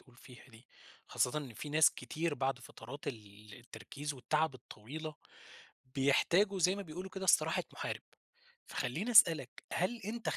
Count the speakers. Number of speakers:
1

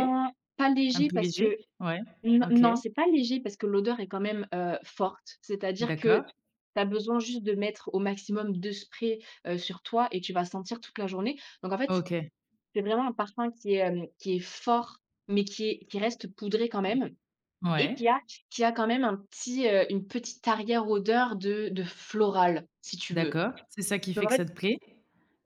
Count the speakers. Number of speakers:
2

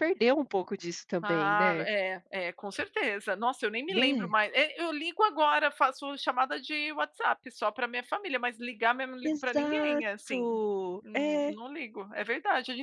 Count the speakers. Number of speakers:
2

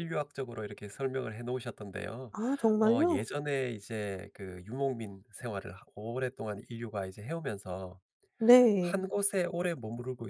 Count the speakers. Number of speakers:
2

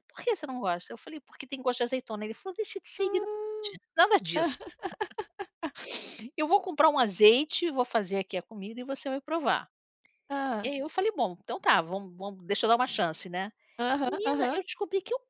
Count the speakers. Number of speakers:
2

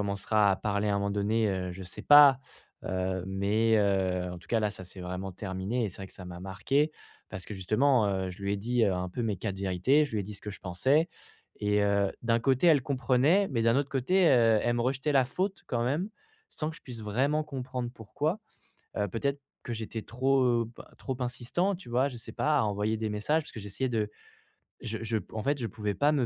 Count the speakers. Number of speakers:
1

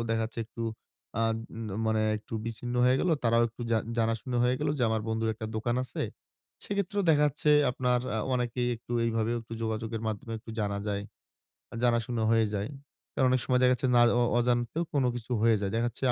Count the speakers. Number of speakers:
1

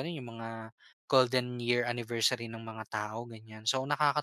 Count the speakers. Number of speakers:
1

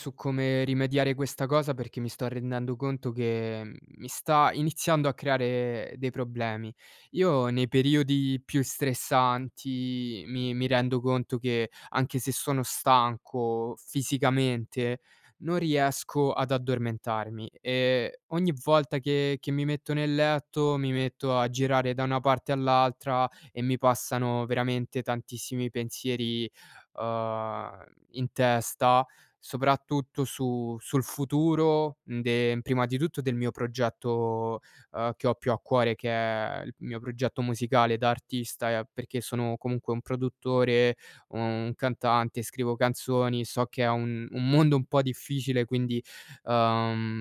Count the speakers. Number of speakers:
1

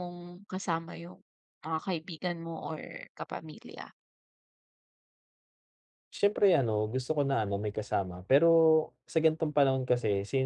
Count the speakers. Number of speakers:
2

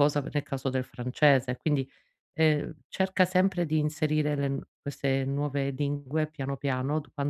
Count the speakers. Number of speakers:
1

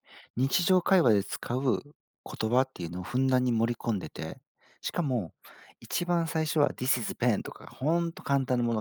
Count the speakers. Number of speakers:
1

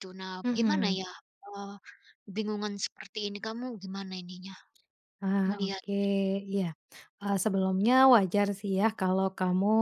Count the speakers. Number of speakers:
2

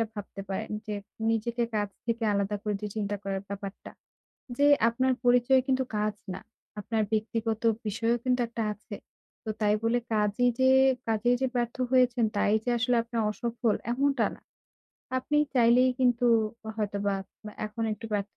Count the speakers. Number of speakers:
1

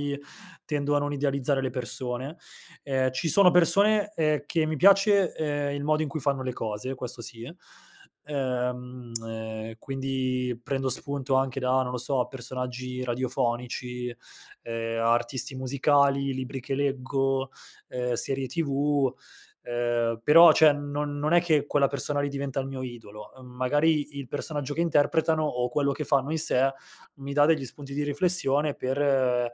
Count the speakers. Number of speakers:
1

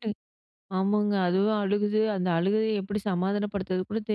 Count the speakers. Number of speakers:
1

